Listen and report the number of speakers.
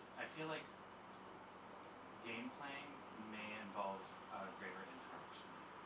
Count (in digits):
1